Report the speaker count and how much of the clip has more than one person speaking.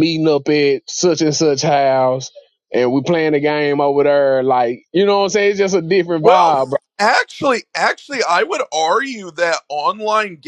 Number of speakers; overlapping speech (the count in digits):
2, about 3%